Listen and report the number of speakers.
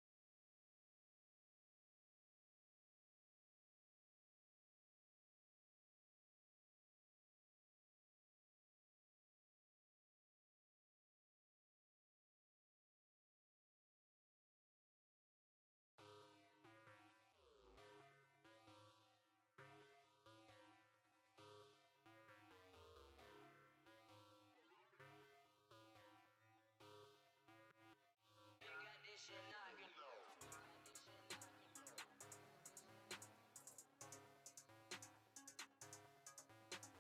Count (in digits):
0